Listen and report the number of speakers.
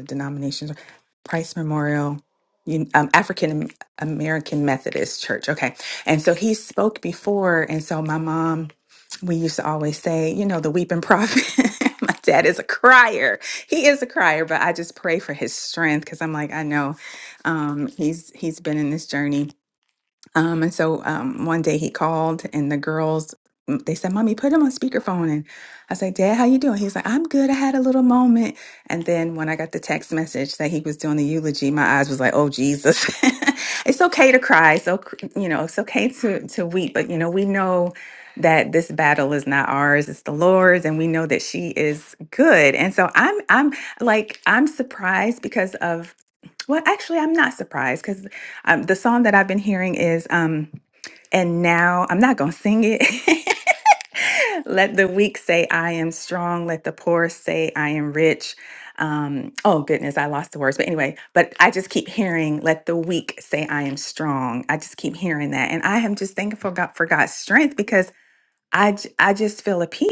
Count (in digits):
1